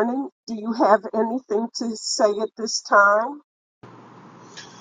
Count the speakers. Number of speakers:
one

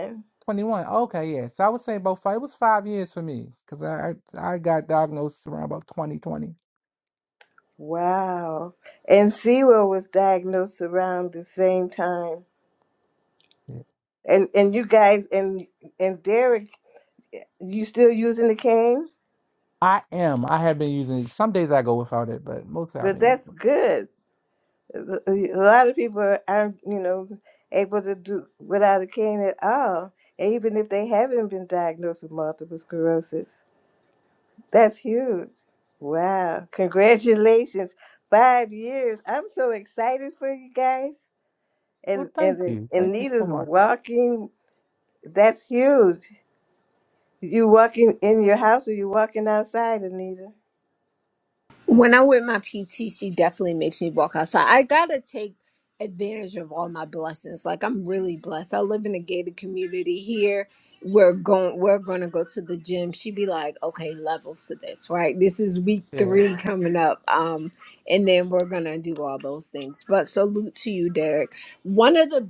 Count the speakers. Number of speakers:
three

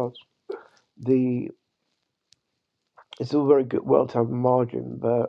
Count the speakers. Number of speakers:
one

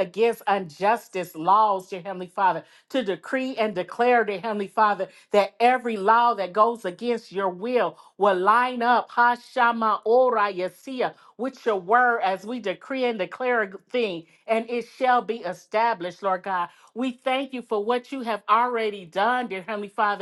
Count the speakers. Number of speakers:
one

